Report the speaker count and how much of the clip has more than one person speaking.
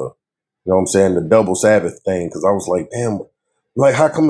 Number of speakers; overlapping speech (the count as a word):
one, no overlap